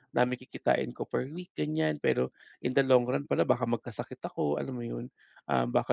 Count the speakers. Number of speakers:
one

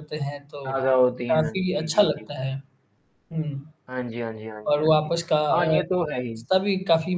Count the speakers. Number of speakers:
two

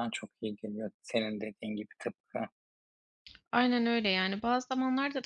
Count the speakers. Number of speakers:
two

